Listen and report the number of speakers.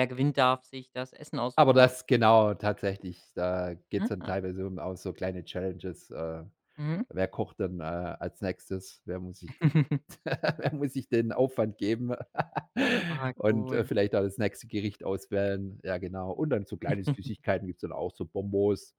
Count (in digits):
2